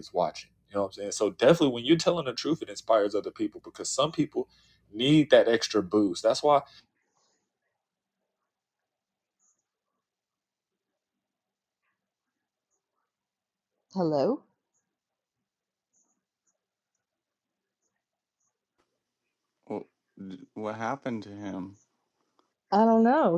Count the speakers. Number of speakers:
3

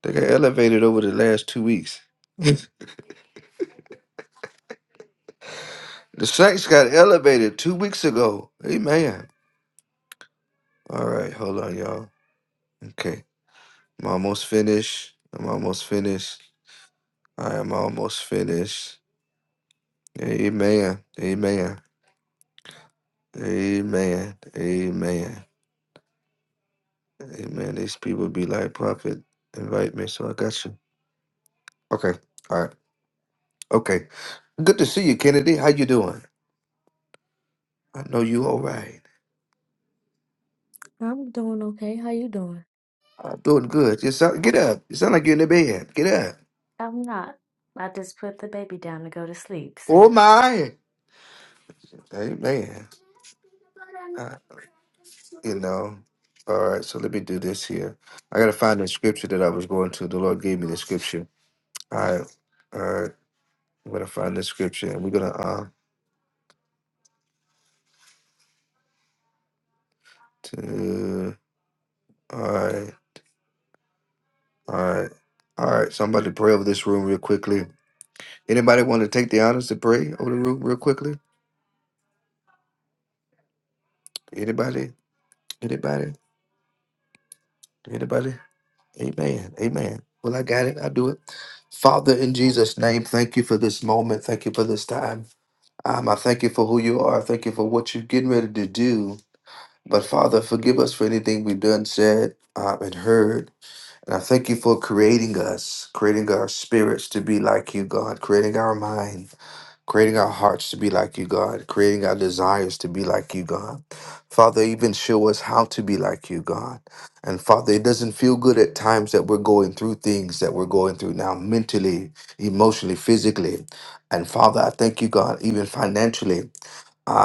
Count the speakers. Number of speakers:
2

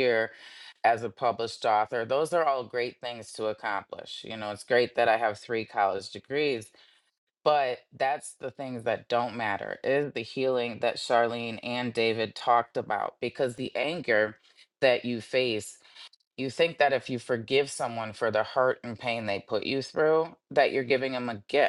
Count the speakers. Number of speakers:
1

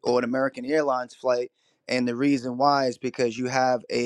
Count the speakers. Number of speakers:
1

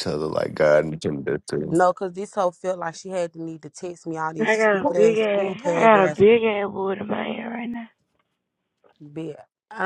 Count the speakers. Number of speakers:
3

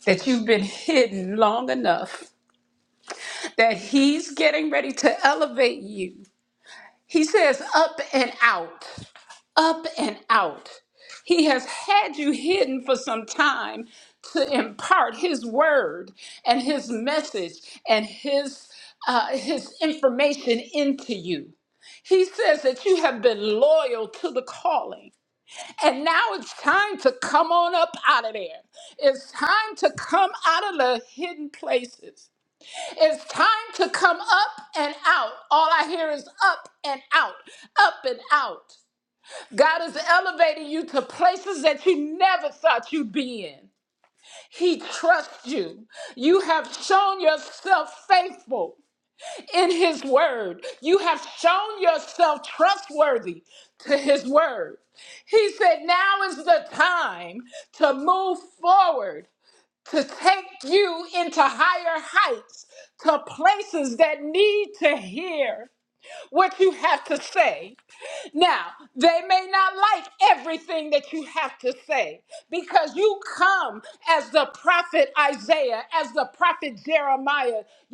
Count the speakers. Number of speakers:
1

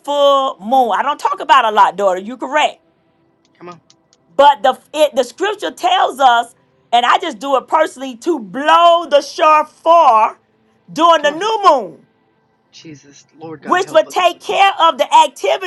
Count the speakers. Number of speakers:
2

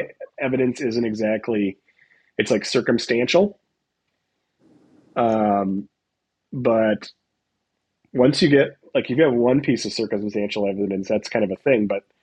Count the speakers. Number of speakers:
1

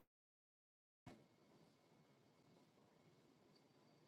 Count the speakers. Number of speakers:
0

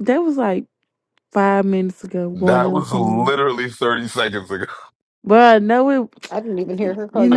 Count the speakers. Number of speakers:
3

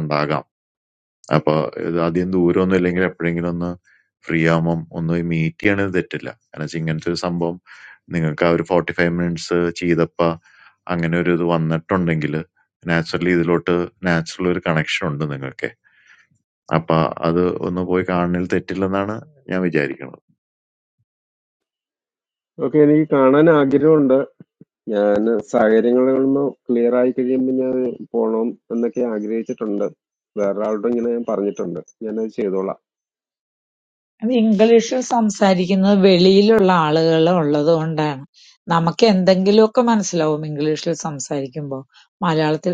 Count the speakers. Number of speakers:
3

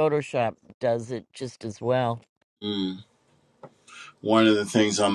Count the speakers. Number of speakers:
2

